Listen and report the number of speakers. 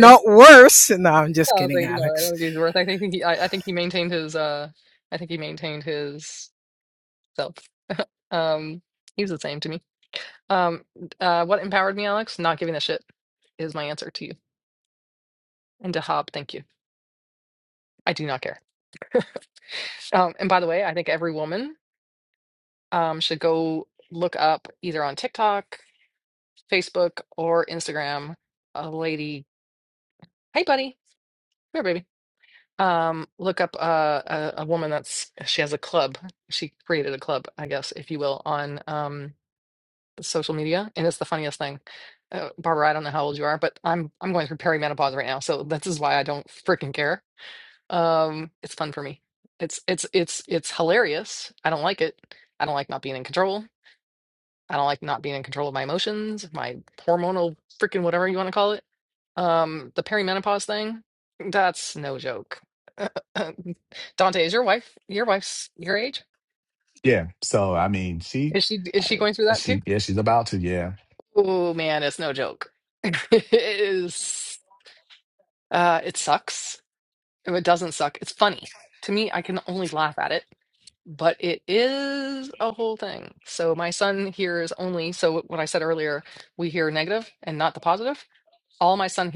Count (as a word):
three